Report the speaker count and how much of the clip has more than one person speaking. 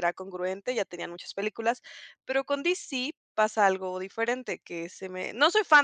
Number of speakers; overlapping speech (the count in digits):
1, no overlap